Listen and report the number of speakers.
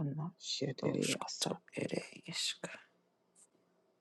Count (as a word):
two